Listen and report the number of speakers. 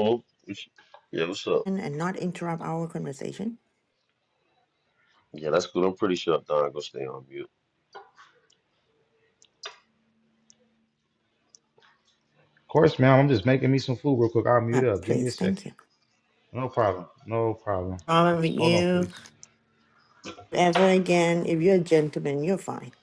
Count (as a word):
three